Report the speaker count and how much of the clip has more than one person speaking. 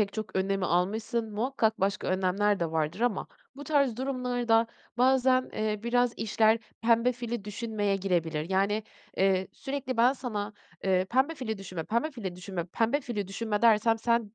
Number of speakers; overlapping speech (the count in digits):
1, no overlap